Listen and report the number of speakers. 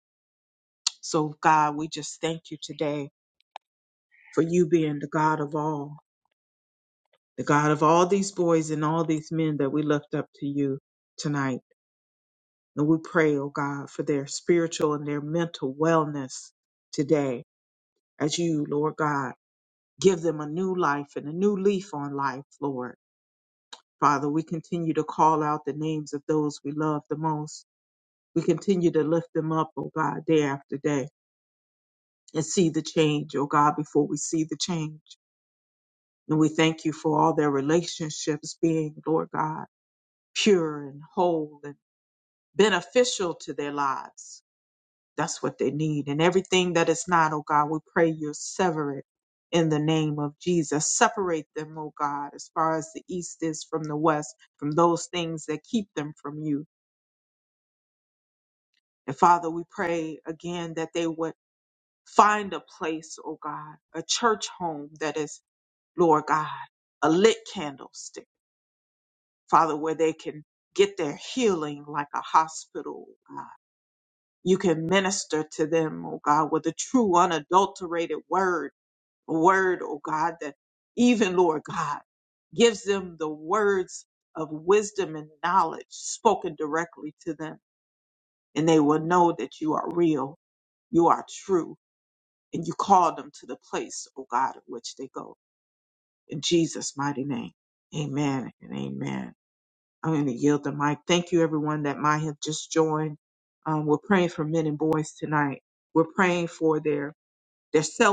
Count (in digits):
1